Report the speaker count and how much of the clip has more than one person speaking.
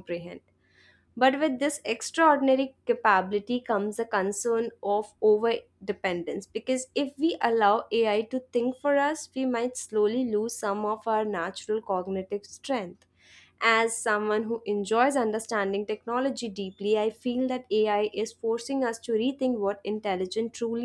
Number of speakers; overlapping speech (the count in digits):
1, no overlap